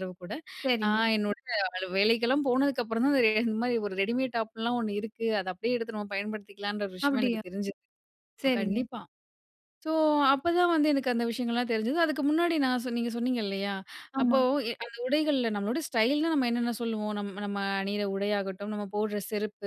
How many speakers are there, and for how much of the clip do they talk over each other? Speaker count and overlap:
two, about 6%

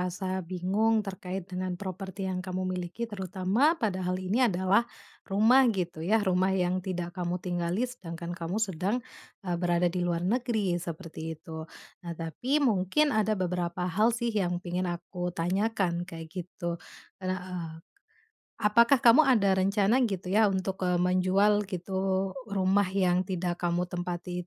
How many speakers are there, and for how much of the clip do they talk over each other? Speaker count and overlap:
one, no overlap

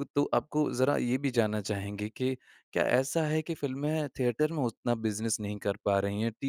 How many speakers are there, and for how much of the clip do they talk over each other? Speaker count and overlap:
one, no overlap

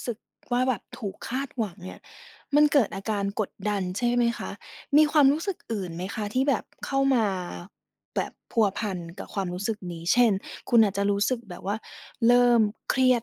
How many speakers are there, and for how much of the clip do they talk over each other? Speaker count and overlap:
one, no overlap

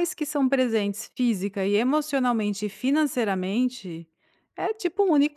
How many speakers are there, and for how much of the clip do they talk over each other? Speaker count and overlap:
one, no overlap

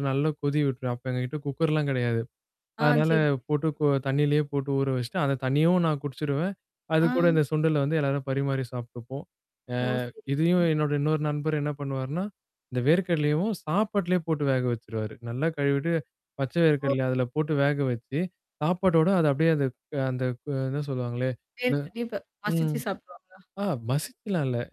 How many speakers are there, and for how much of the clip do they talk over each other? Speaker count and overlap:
two, about 5%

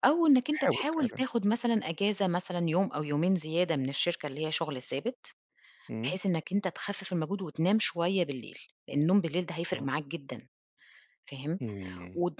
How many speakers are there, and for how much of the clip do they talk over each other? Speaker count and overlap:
two, about 7%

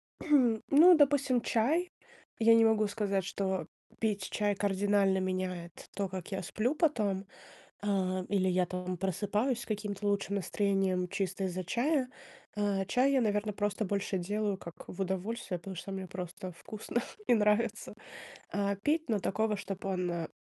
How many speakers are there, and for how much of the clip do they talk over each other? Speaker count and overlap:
one, no overlap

